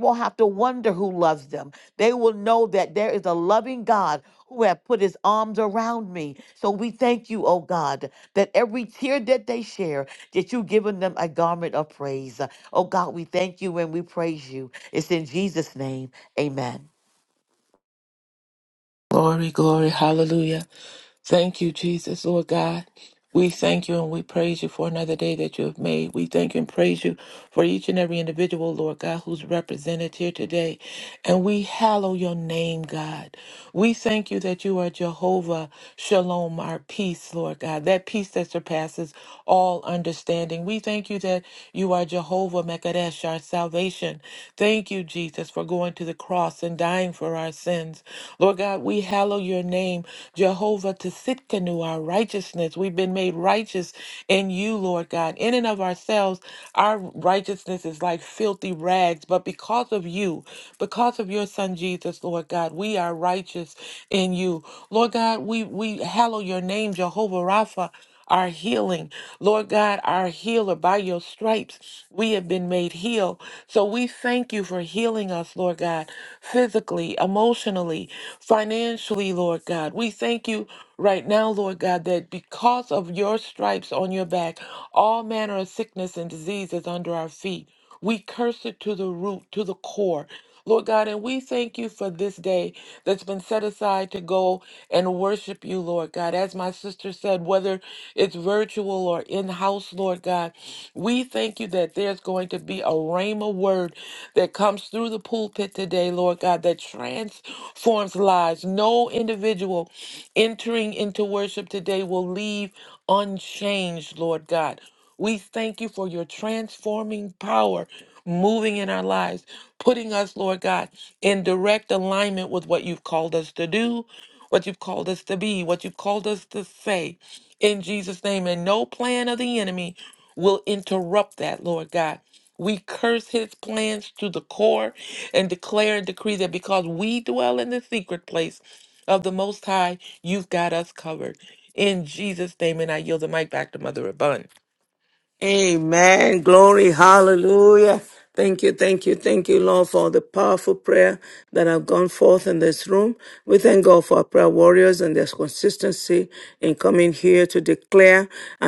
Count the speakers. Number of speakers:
three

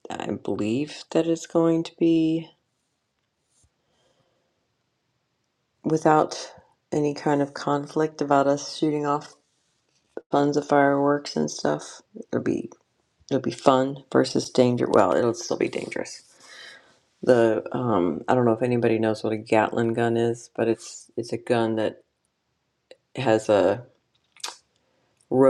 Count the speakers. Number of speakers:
one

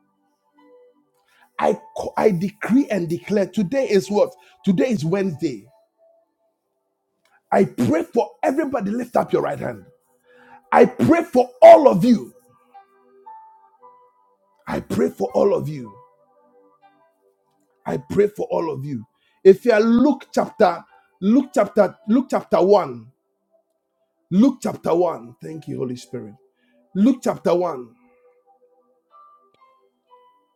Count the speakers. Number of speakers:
one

